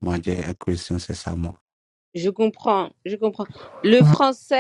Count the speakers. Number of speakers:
2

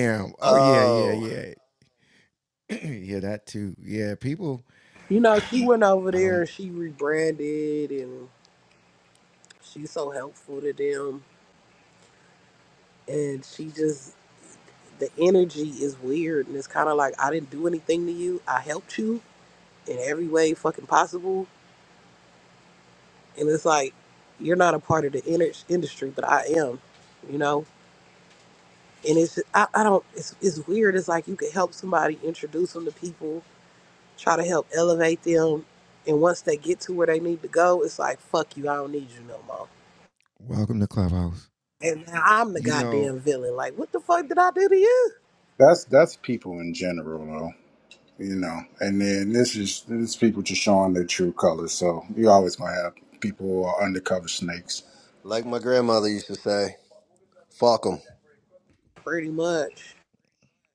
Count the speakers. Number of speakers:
4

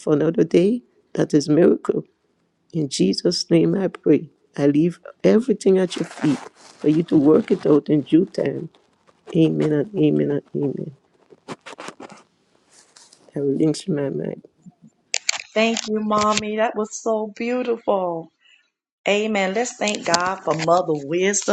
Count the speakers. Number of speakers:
2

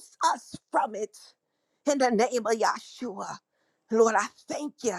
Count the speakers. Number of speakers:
1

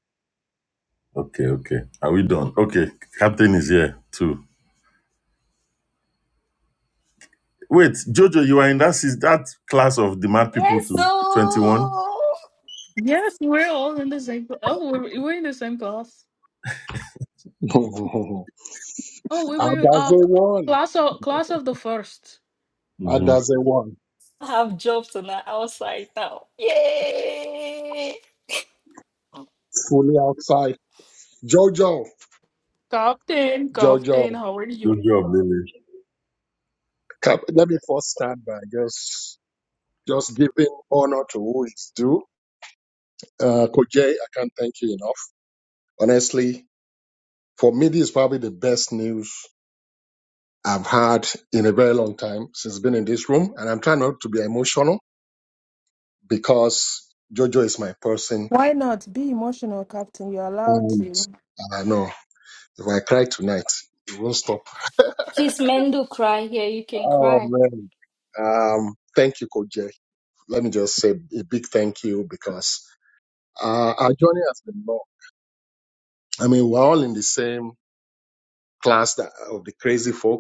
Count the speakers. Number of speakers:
5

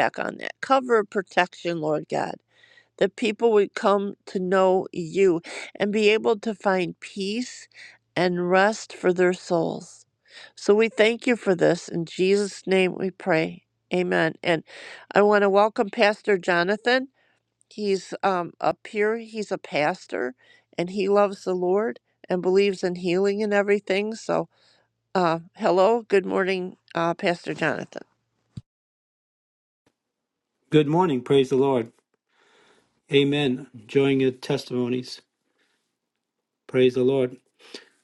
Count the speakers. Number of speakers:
2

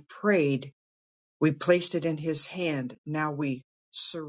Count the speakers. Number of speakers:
1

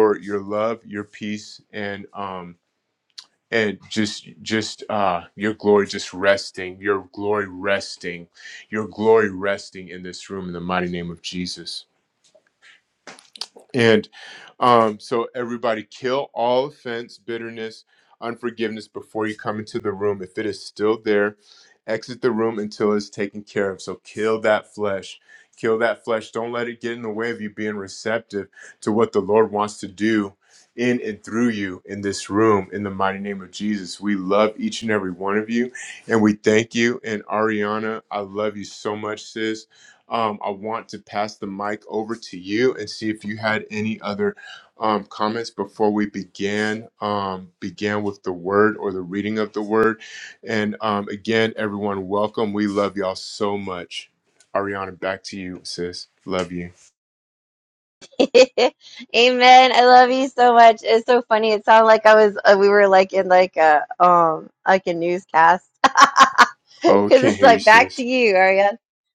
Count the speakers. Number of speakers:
2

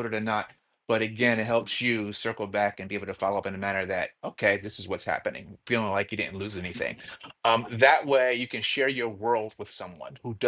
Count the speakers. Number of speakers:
1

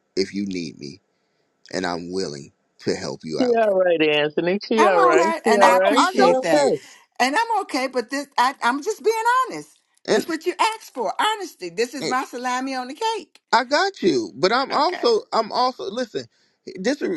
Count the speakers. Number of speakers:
3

